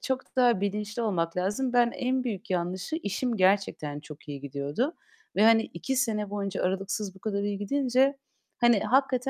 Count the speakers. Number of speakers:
one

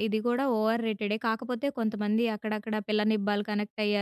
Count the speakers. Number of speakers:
one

